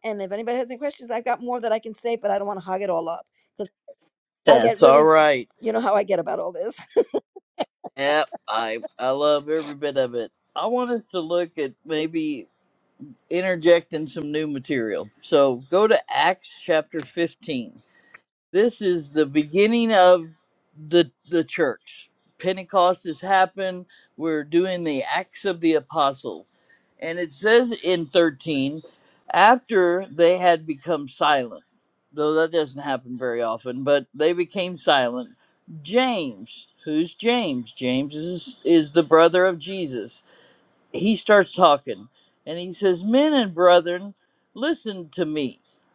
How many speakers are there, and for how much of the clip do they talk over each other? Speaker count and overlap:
2, about 1%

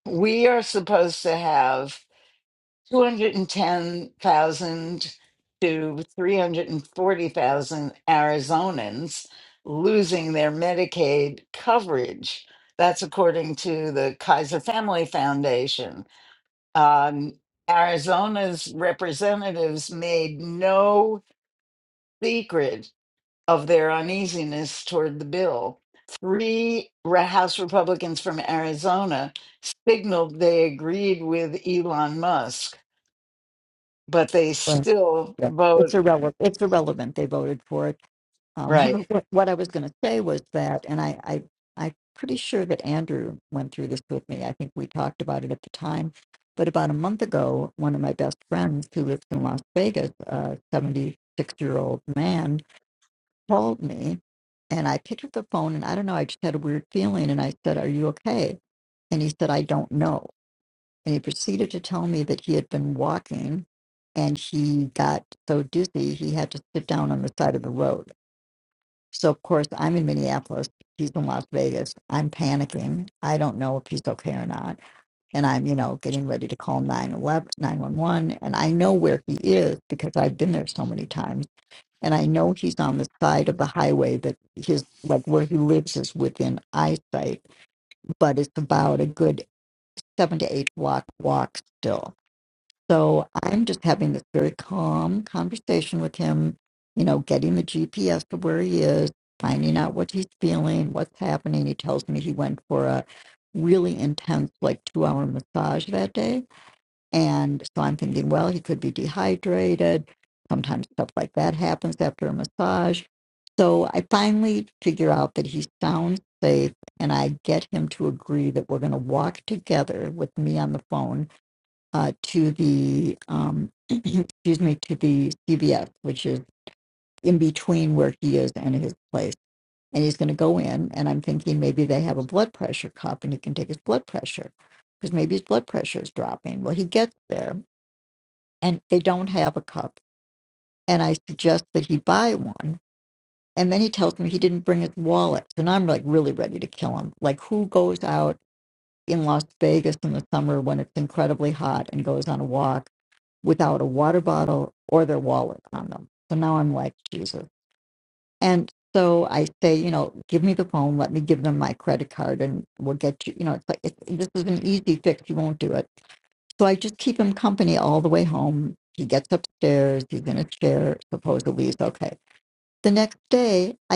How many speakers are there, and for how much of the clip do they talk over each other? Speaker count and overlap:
2, about 1%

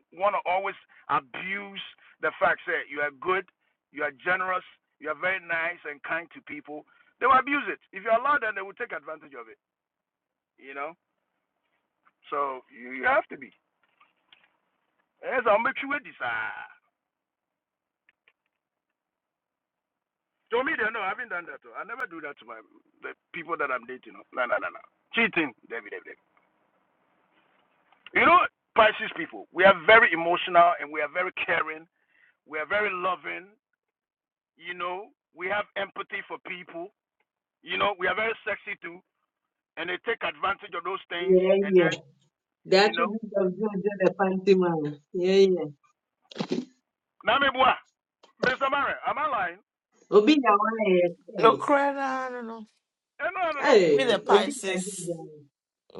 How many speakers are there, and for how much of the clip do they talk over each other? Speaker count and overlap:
3, about 4%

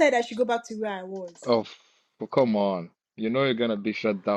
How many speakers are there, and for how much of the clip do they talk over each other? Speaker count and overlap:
2, no overlap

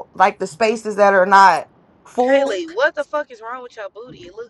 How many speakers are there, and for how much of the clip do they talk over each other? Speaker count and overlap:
2, about 8%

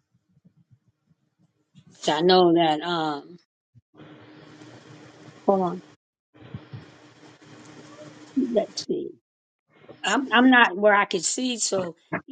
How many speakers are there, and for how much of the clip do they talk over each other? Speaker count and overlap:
1, no overlap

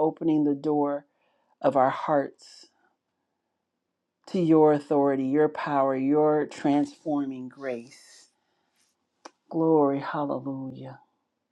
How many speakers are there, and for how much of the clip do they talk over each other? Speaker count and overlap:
1, no overlap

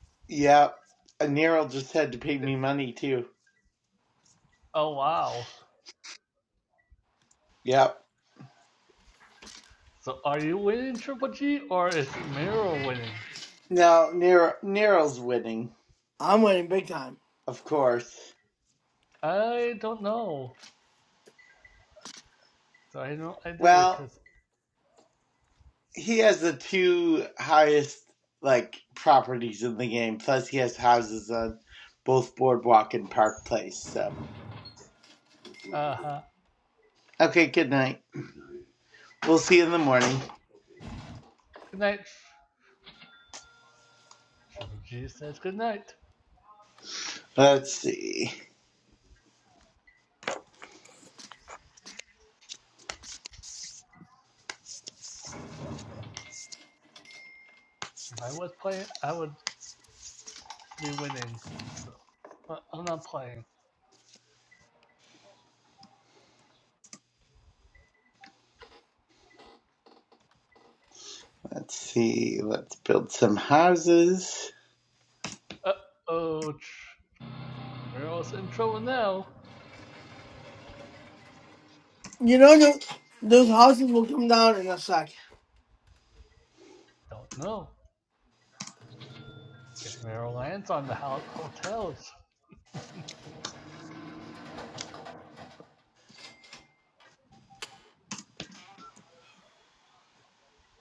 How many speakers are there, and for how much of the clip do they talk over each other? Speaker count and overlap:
3, about 1%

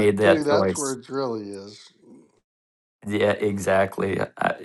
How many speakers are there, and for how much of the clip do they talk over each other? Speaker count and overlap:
2, about 16%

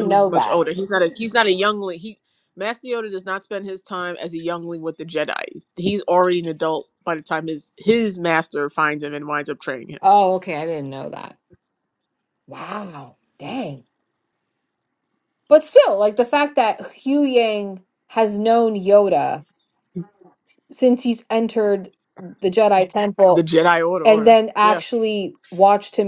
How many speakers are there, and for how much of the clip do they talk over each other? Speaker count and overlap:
2, about 5%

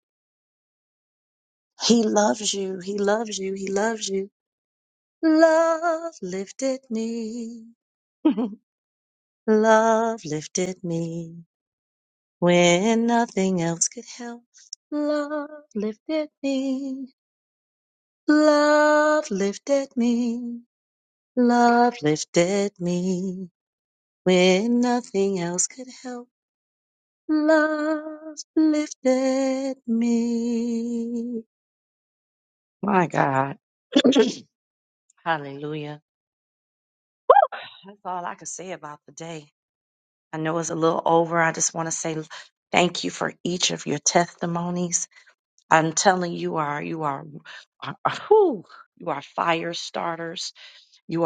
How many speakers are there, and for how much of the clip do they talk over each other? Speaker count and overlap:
1, no overlap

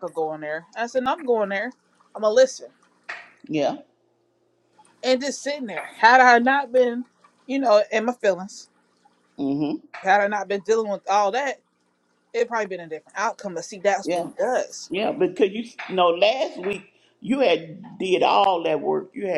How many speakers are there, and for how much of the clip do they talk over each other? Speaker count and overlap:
2, about 1%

